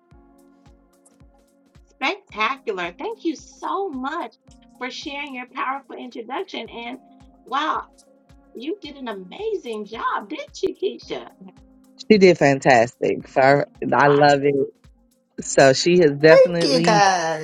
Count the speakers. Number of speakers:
three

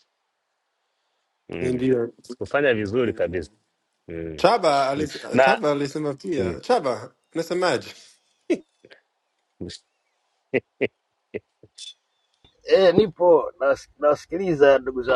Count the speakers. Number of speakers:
three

